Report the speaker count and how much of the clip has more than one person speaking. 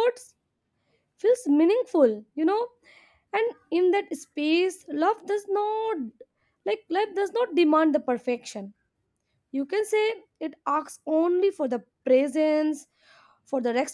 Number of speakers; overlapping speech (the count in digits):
1, no overlap